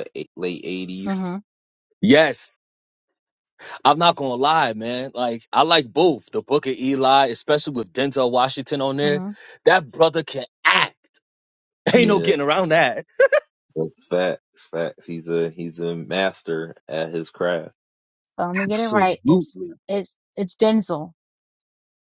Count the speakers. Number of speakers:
3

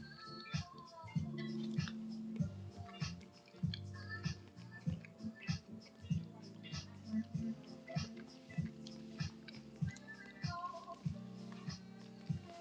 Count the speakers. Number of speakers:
0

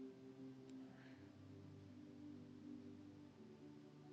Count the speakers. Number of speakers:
0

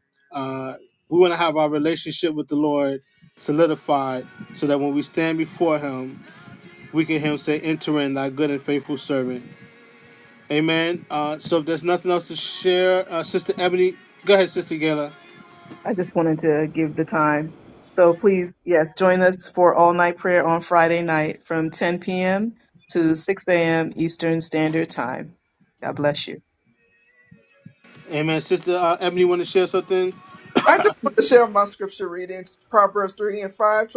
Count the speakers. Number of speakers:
3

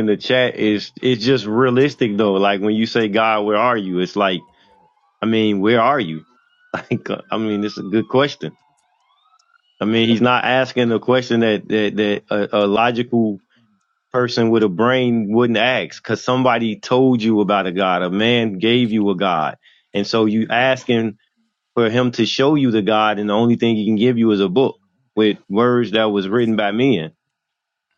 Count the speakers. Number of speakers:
1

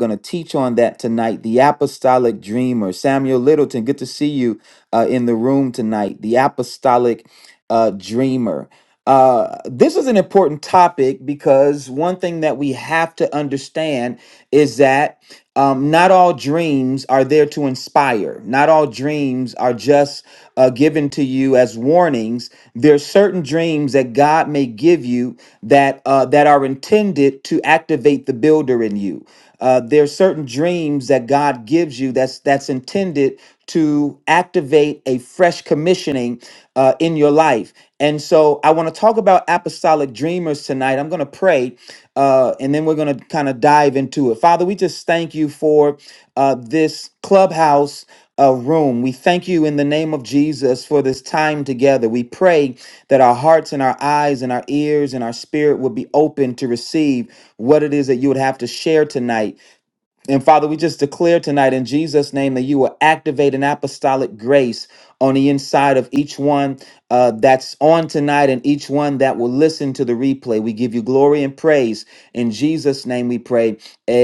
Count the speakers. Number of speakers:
1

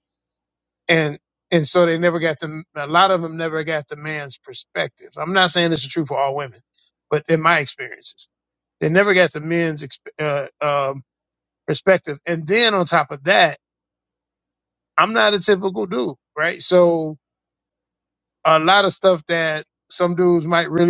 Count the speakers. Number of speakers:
1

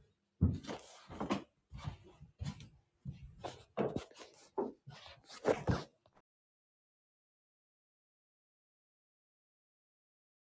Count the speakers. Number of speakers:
0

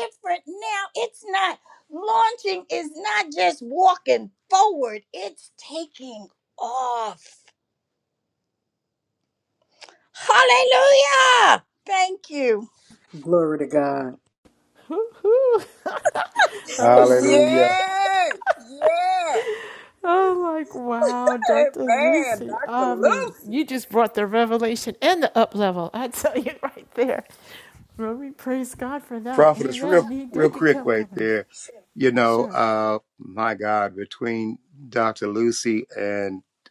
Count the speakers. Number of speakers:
4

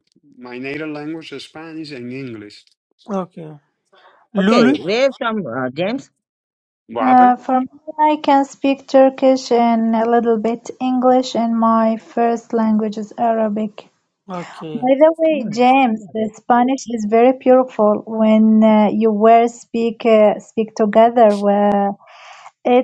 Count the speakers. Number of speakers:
4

